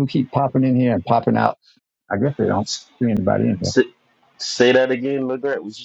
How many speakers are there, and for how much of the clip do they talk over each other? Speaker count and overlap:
2, about 2%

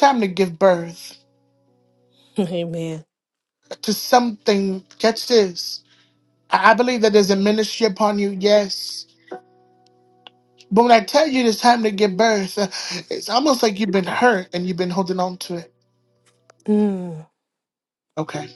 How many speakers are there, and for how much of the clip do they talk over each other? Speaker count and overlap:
2, no overlap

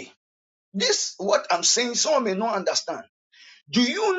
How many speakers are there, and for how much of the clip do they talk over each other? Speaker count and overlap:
1, no overlap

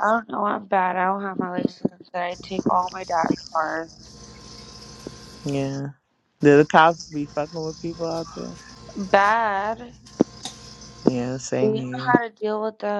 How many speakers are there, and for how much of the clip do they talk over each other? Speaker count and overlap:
2, about 4%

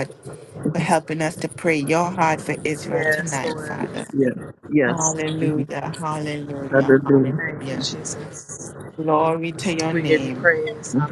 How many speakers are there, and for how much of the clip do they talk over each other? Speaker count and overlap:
3, about 30%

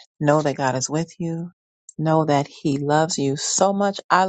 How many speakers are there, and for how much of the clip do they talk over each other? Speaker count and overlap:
1, no overlap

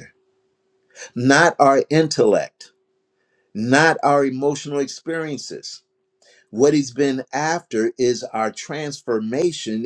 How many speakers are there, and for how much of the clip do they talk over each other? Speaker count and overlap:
1, no overlap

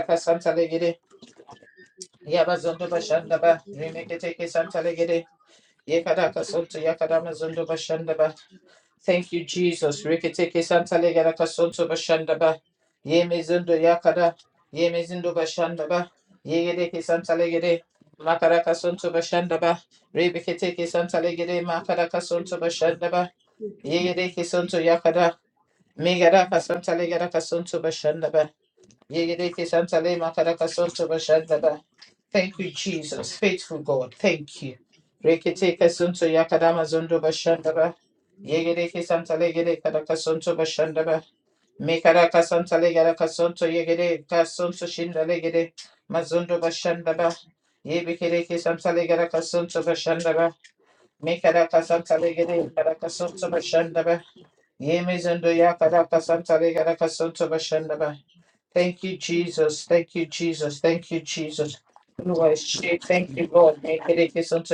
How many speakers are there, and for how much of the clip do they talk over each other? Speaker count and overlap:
1, no overlap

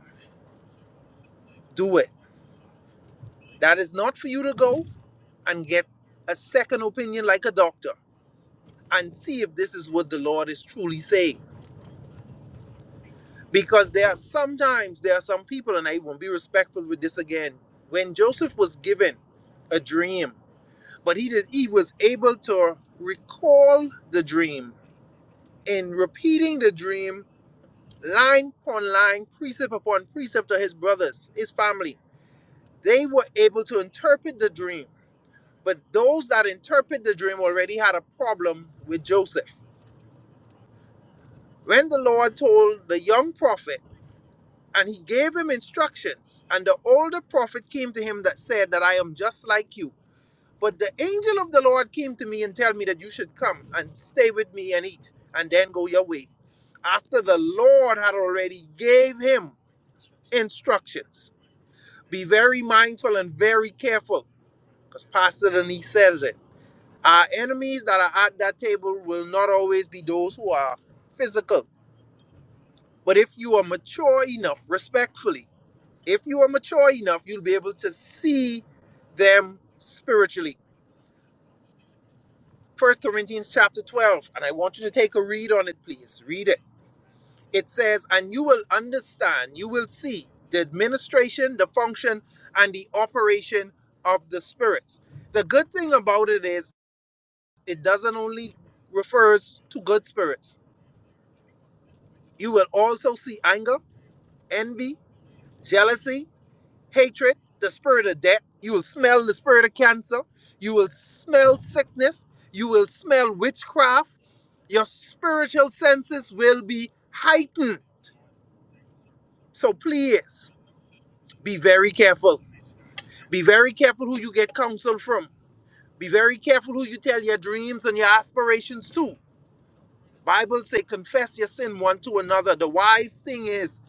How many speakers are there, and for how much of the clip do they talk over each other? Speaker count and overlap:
1, no overlap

